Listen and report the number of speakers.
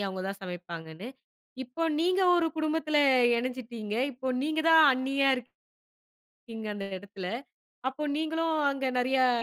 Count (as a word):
one